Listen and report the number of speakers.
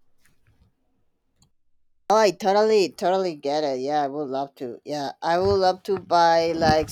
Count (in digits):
1